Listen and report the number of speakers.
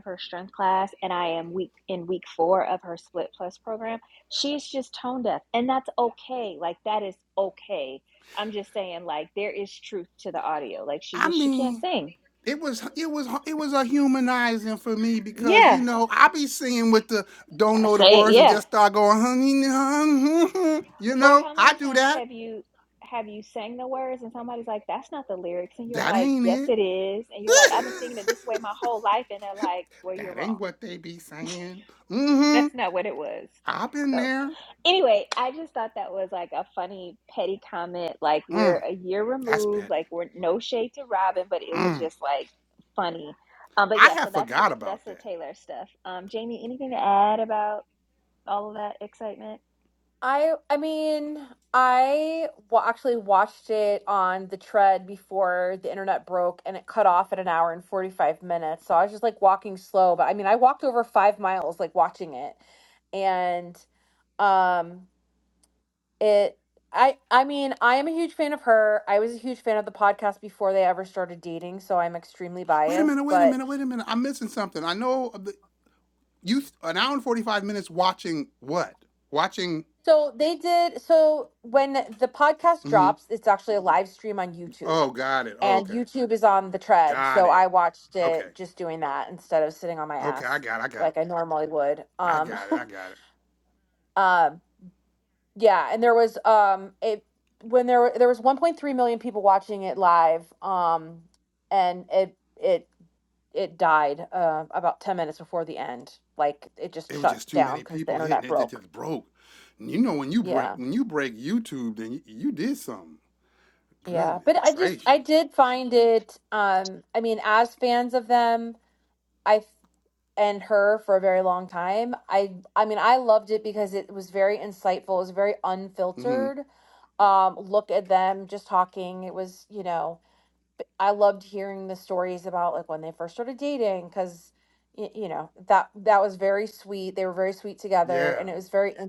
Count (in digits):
3